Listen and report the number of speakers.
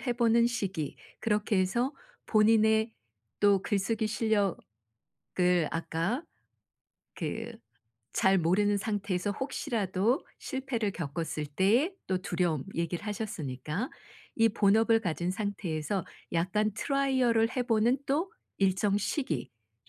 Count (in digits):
1